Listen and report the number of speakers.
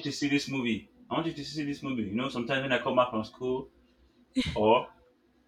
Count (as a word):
one